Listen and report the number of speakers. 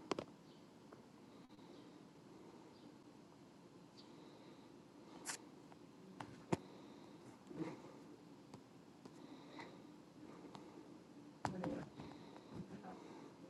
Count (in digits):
0